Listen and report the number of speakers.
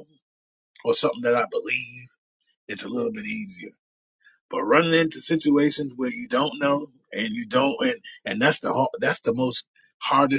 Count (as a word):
one